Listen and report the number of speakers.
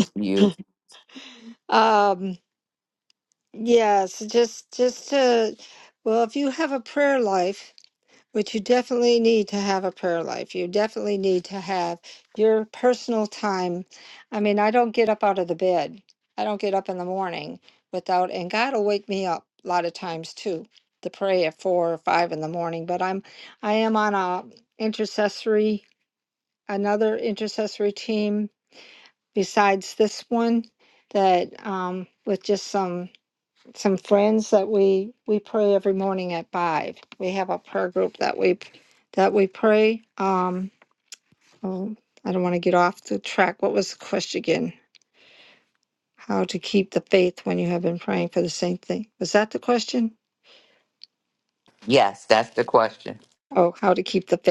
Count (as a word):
two